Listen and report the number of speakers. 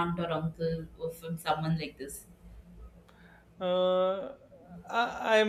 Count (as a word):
two